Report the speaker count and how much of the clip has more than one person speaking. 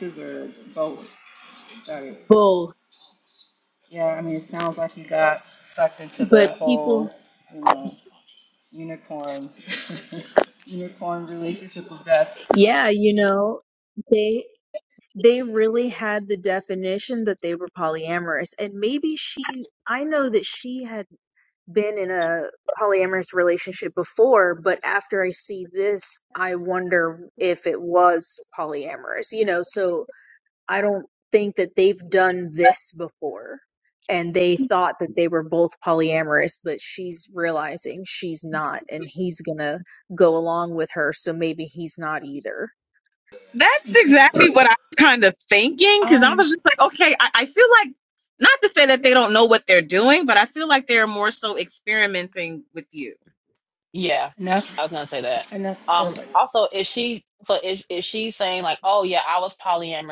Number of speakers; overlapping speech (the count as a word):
four, about 3%